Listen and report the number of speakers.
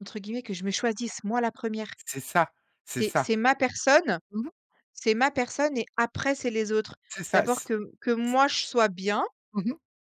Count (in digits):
2